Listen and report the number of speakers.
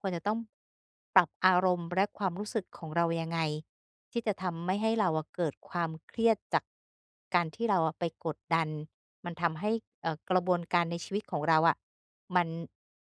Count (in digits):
1